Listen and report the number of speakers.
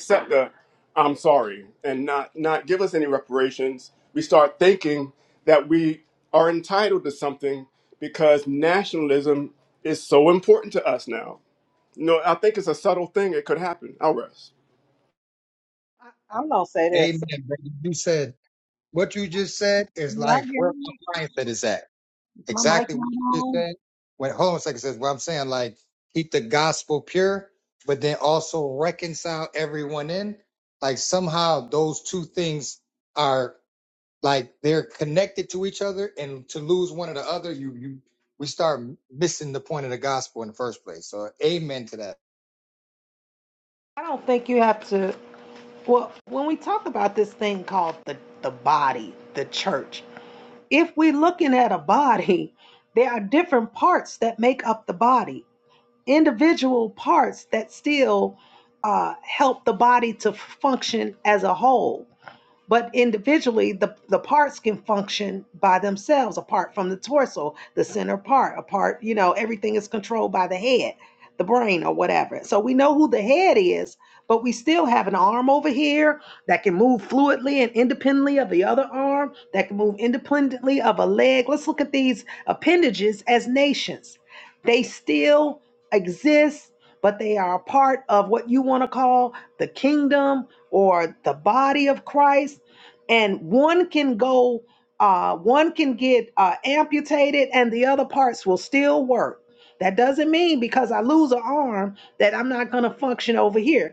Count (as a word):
three